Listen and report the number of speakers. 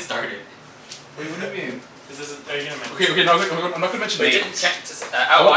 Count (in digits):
3